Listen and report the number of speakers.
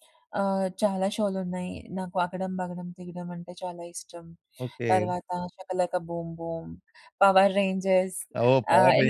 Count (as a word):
two